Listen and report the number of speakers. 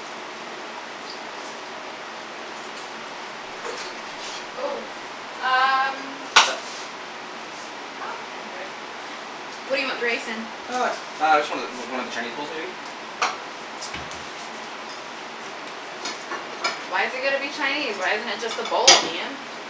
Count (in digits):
2